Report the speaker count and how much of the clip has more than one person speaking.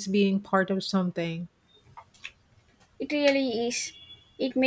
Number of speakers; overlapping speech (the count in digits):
2, no overlap